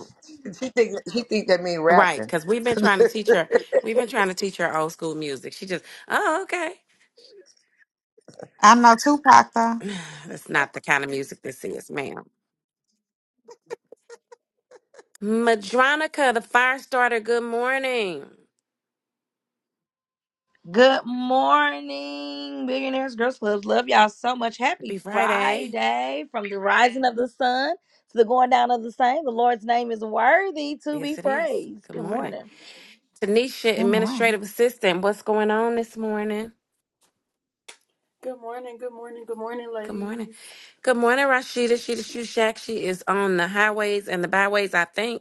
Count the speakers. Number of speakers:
5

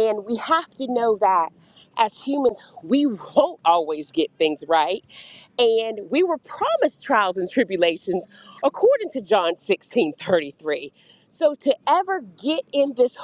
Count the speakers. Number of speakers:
1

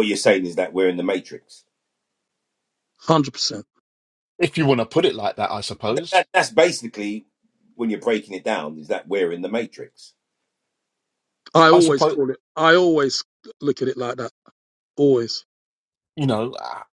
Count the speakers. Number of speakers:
3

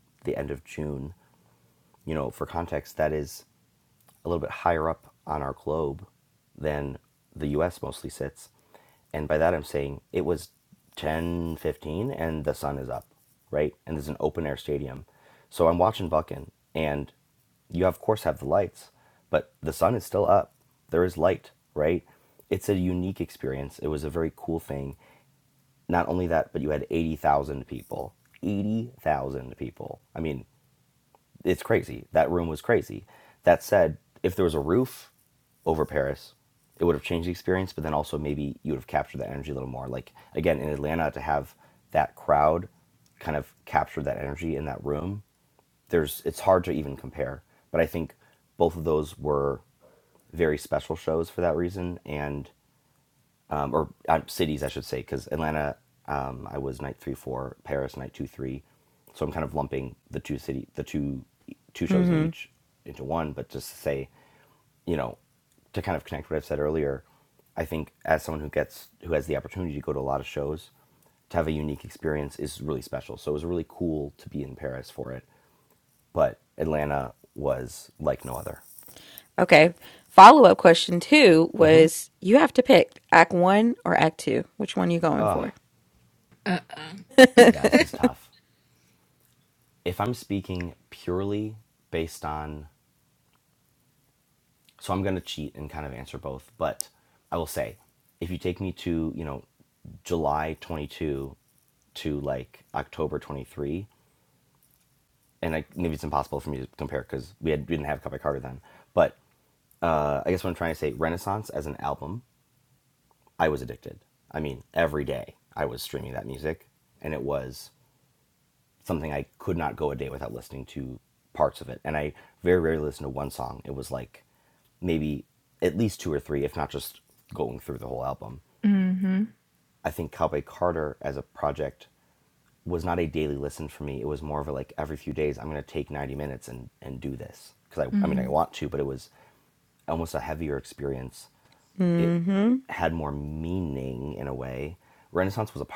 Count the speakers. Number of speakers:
3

